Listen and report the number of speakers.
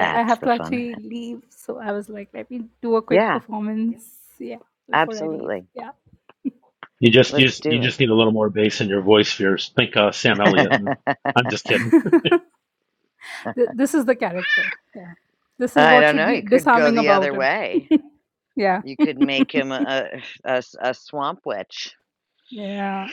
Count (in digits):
3